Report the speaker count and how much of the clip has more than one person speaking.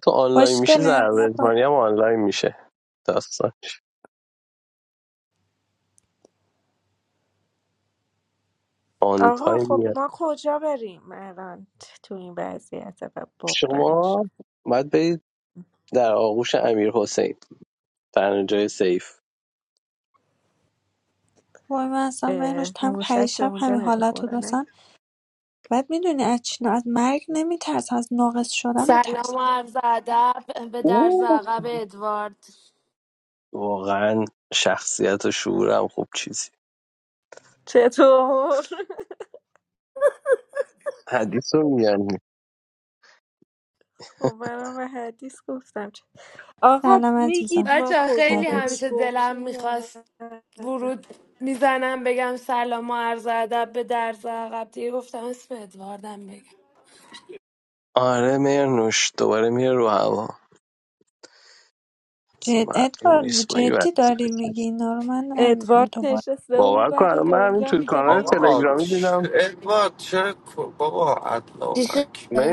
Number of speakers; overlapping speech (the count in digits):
5, about 21%